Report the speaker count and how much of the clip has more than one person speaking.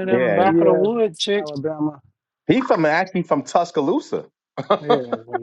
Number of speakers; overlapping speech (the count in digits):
3, about 25%